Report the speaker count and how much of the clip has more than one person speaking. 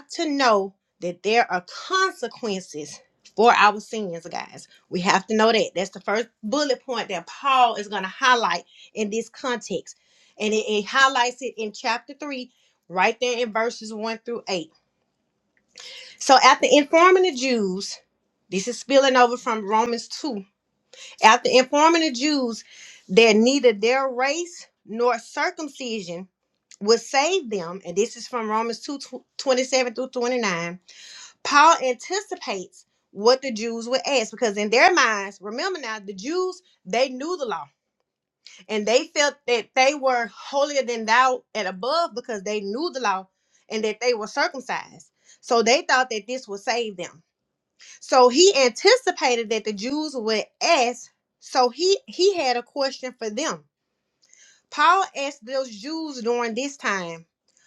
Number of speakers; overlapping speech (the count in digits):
1, no overlap